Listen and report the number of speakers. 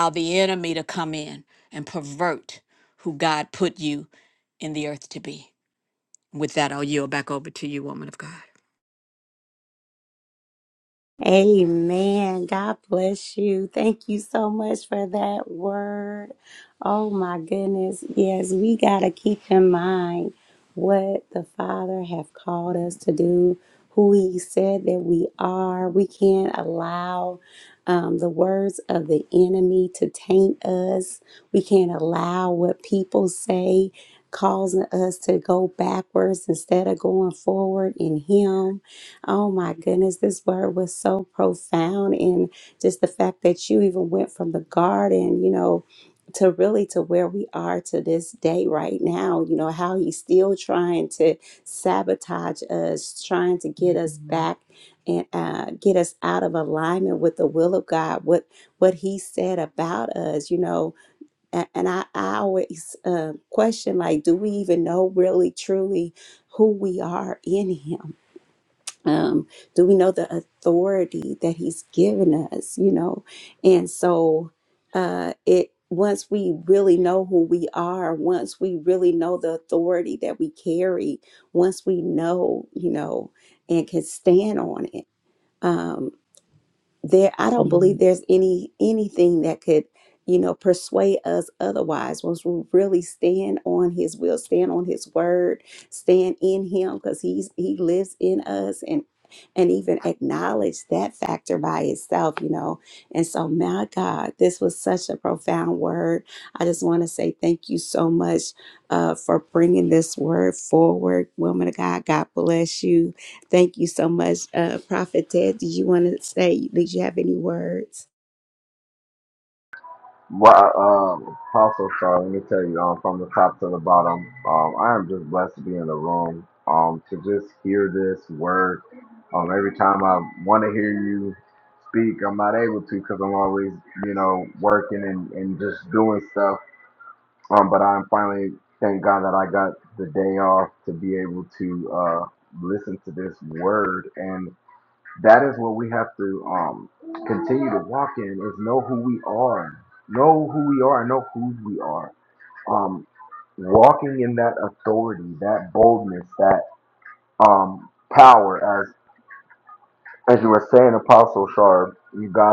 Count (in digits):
3